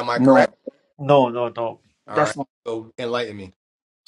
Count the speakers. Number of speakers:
two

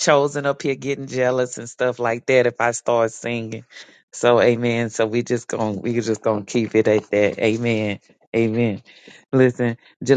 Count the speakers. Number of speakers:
one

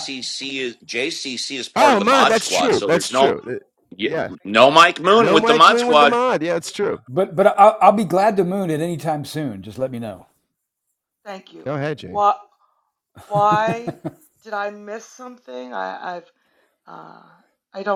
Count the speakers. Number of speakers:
four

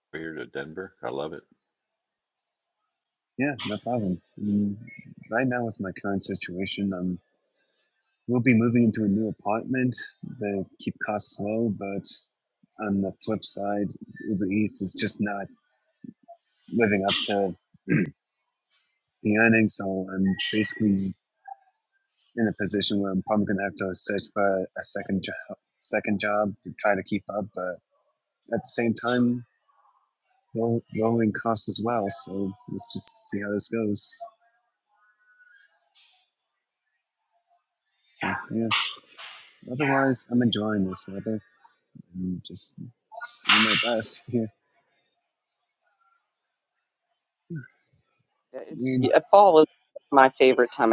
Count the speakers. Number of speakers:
three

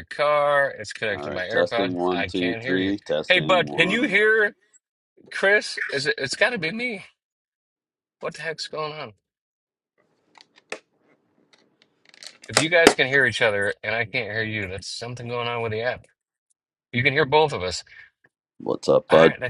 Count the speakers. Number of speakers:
two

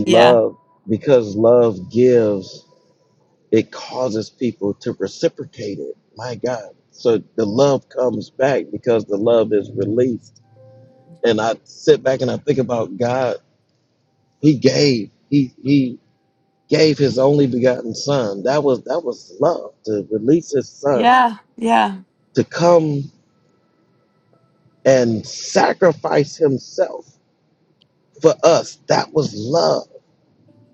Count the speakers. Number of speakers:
two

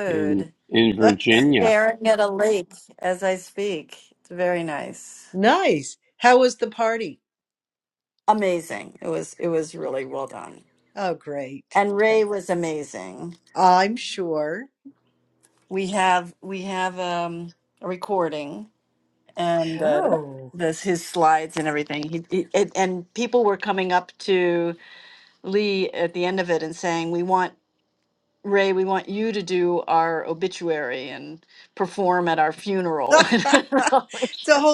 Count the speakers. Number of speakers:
three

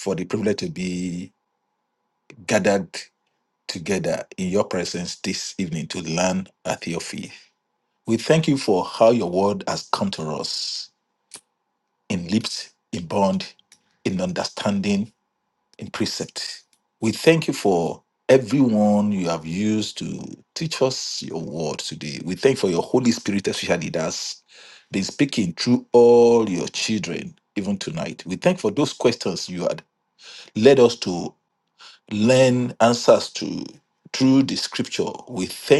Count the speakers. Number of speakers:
one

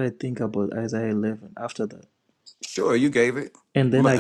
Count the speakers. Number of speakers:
two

